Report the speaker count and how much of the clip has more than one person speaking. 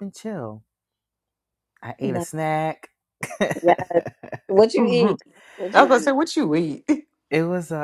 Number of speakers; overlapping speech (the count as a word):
three, about 14%